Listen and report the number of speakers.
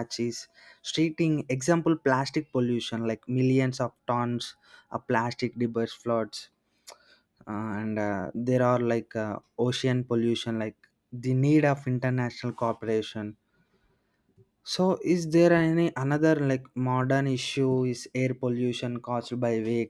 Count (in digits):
1